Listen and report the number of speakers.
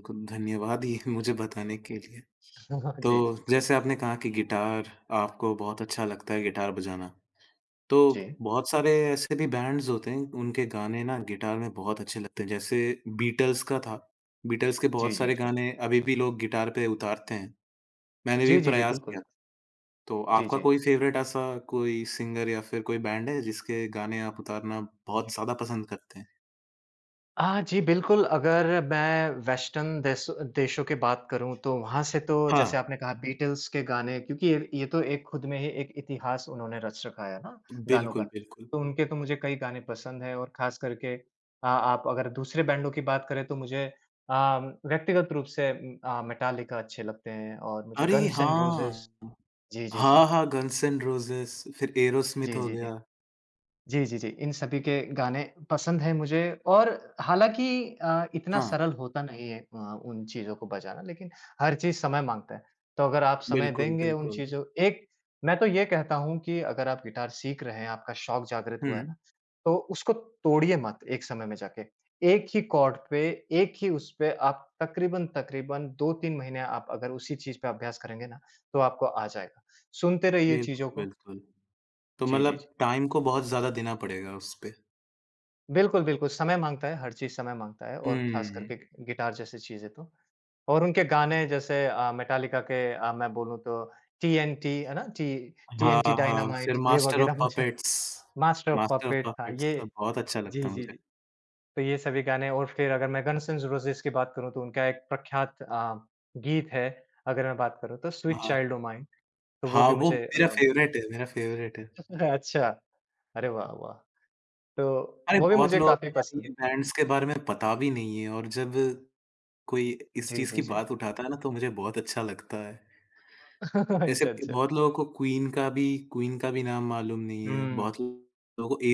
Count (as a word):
two